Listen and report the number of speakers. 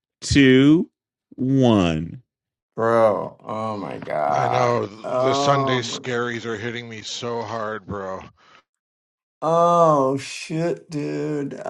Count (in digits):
3